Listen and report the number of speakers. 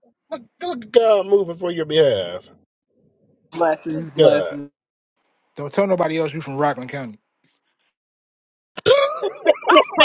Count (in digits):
3